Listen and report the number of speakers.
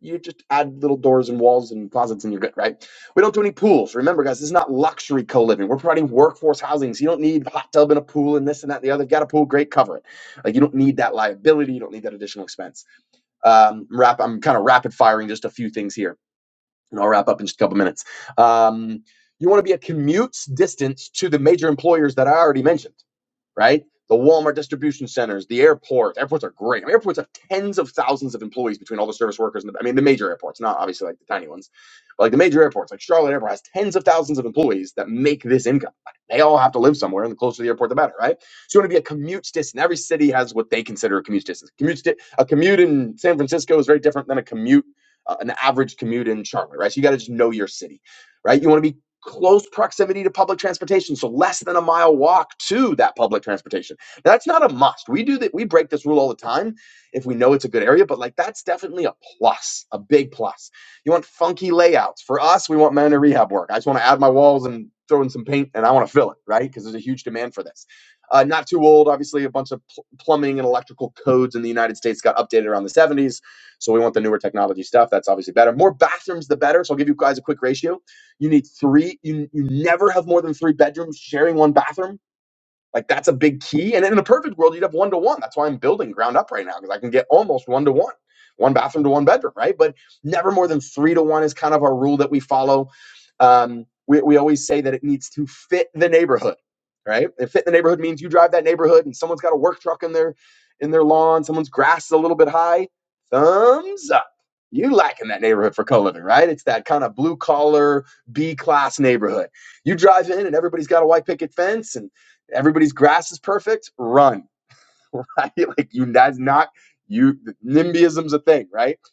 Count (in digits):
1